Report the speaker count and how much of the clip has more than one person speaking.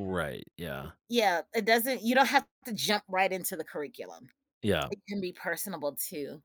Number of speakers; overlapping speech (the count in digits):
2, about 2%